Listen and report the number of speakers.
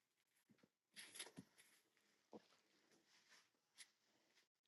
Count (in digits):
0